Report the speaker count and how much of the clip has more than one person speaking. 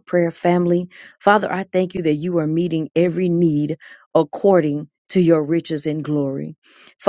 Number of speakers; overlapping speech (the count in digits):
1, no overlap